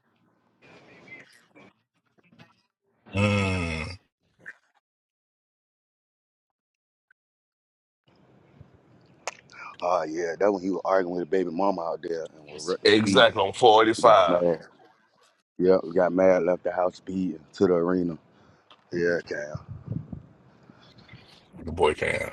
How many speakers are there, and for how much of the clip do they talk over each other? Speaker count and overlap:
3, about 4%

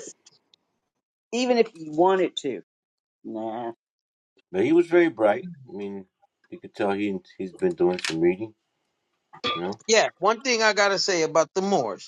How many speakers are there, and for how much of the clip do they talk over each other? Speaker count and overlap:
3, no overlap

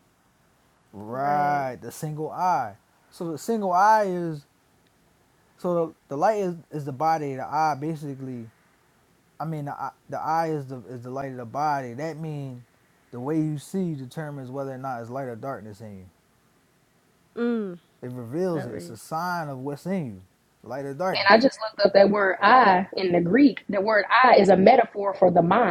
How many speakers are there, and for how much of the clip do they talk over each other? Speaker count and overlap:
3, about 4%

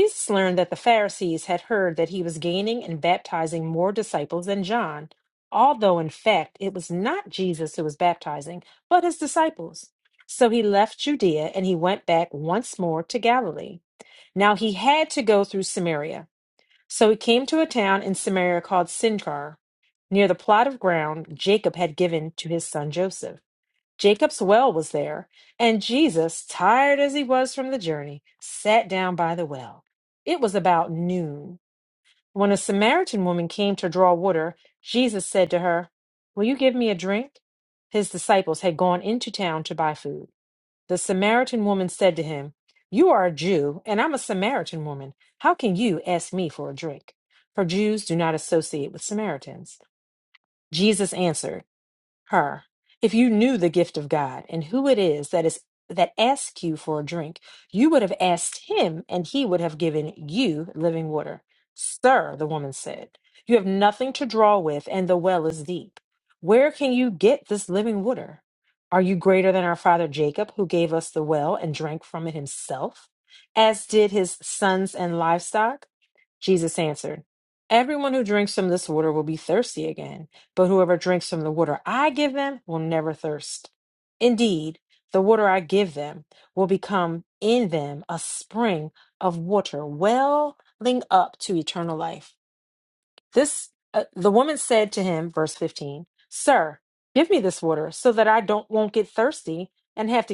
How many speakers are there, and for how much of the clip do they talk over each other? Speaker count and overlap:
1, no overlap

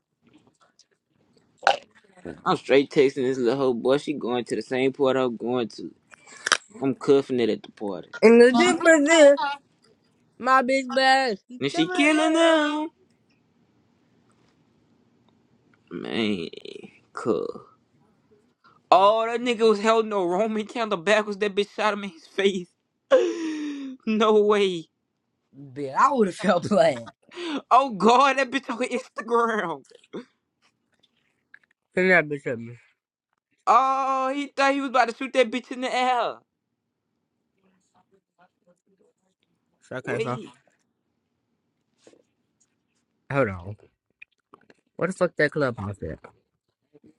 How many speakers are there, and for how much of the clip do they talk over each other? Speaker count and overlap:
2, about 1%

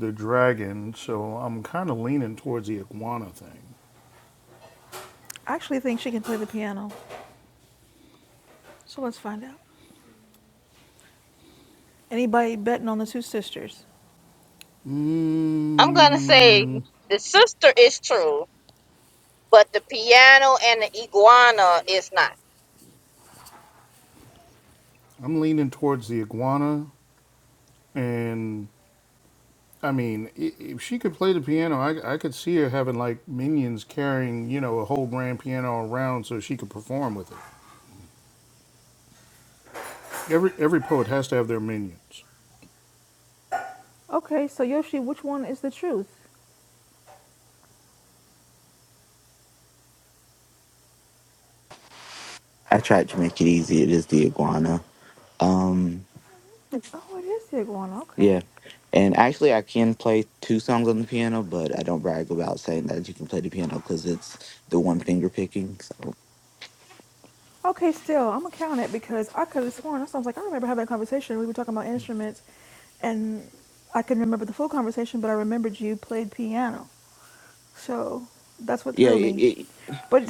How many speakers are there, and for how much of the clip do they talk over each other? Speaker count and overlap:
4, about 1%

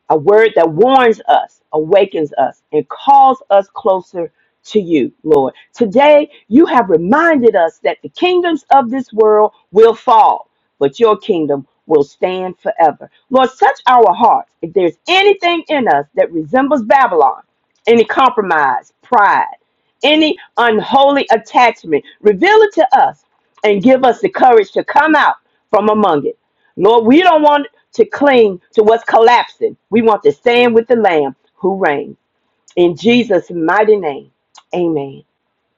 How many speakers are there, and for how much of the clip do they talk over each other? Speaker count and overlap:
1, no overlap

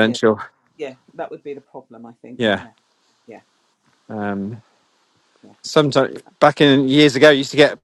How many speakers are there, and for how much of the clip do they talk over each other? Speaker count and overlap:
2, about 7%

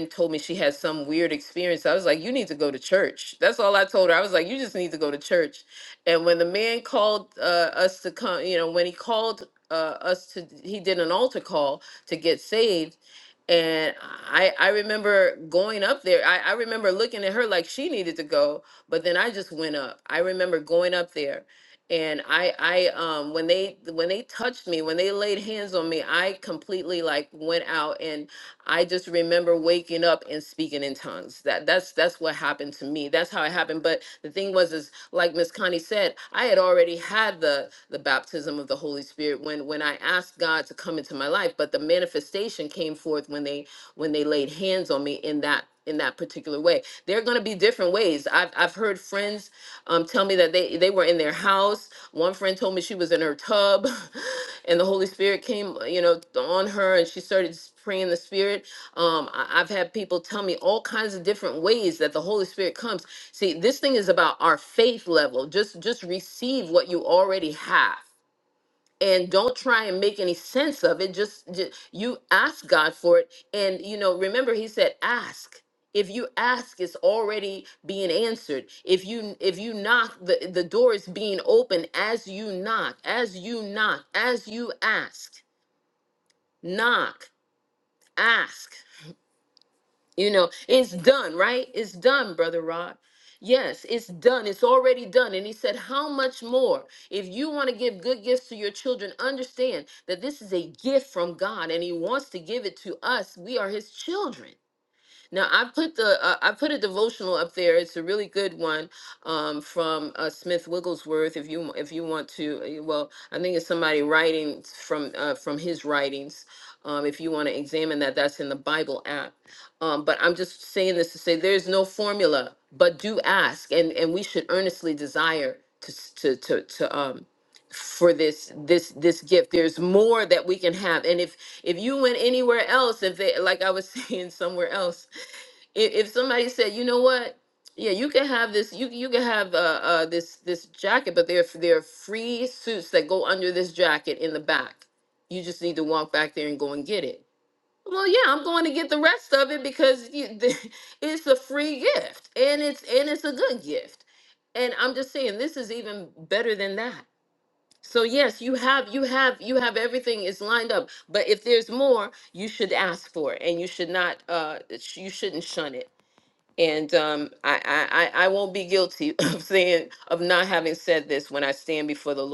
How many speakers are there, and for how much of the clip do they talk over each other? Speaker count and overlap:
1, no overlap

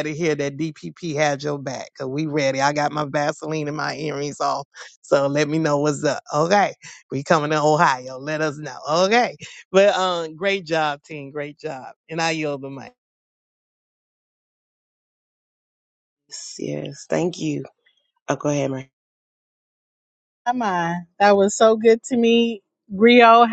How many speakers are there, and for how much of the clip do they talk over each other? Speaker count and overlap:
3, no overlap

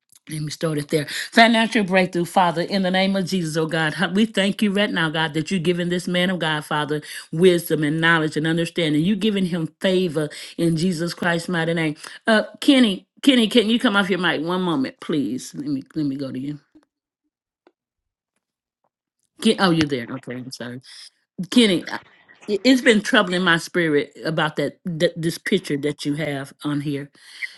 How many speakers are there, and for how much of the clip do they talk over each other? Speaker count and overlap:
1, no overlap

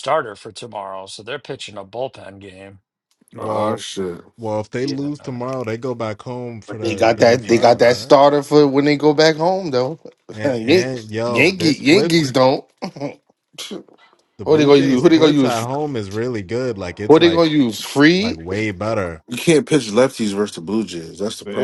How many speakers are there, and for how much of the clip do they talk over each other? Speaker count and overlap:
4, about 25%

